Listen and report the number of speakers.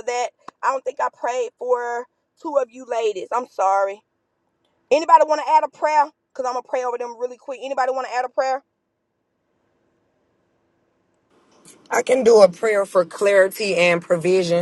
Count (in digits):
2